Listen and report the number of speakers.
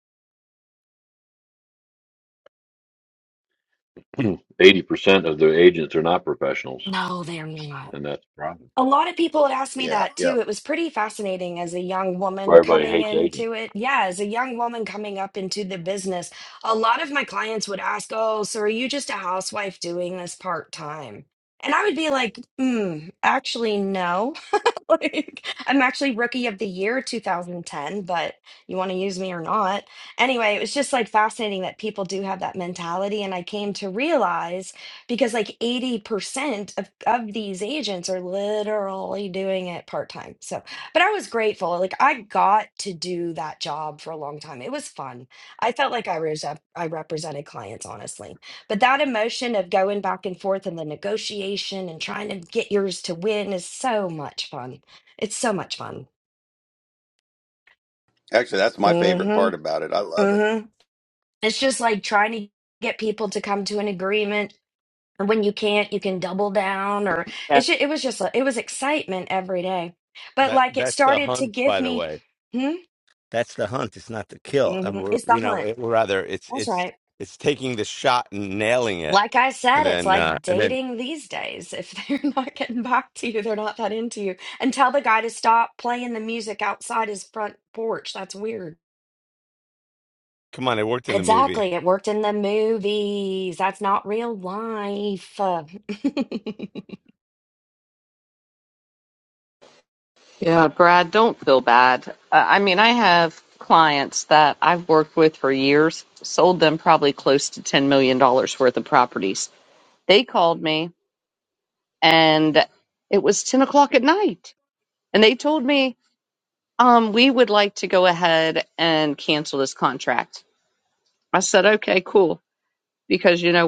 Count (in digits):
5